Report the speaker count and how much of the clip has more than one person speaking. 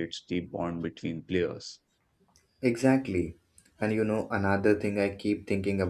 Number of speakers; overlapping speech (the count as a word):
two, no overlap